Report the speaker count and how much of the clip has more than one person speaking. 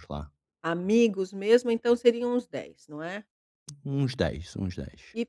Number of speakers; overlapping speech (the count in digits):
2, no overlap